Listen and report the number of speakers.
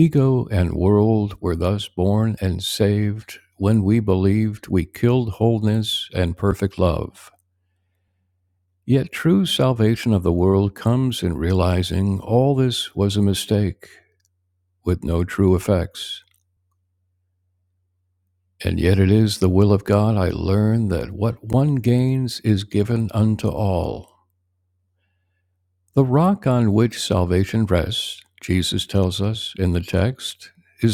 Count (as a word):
one